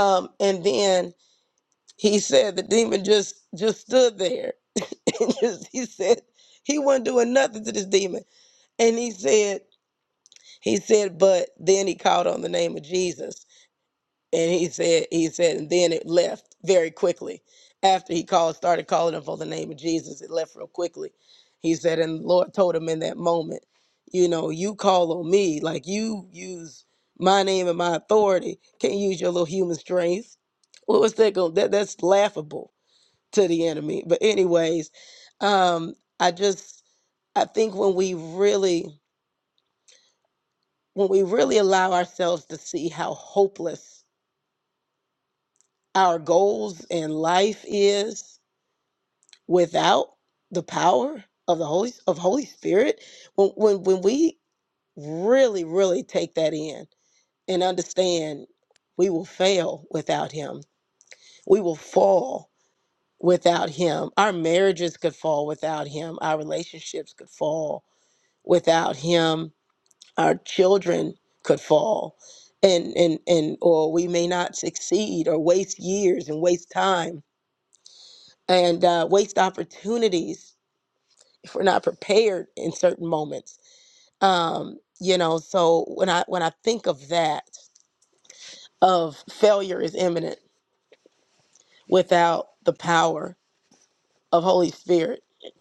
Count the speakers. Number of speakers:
one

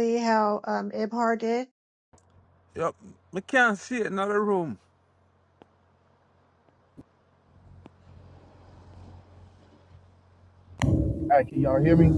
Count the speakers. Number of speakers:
three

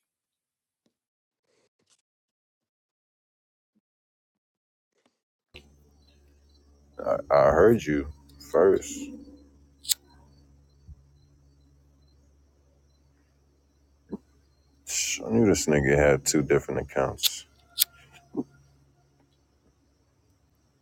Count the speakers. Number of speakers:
one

